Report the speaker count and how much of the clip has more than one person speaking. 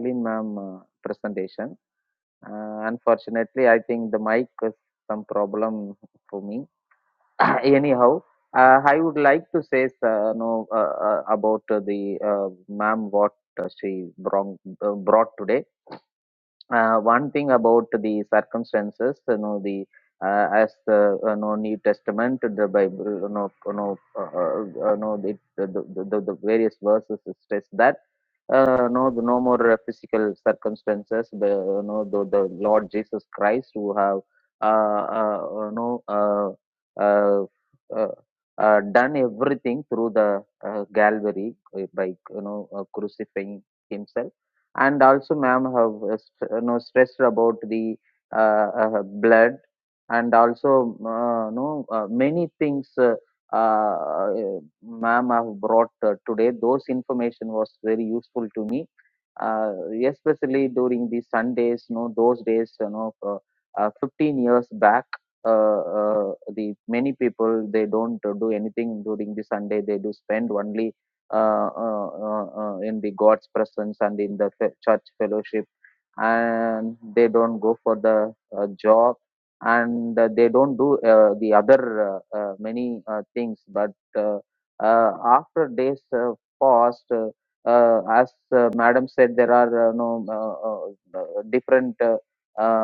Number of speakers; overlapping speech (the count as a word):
one, no overlap